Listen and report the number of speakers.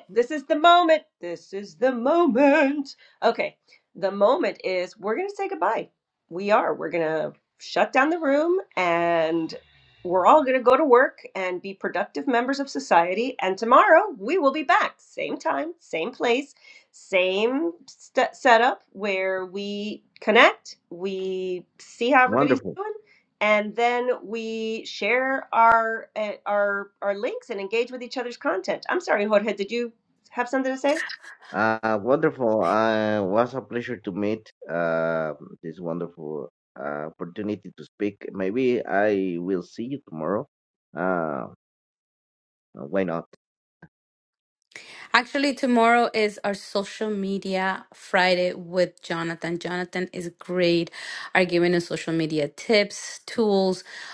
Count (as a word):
three